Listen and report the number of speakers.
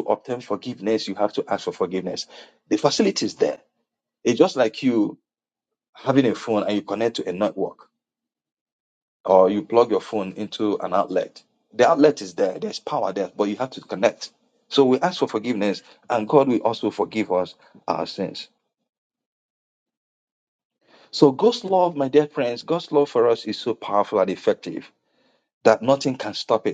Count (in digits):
1